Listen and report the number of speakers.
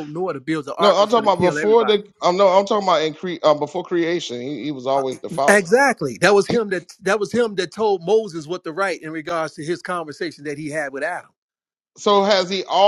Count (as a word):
two